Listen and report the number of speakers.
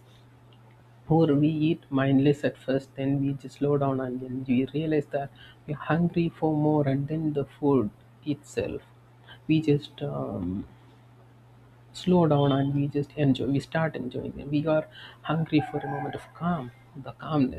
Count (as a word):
one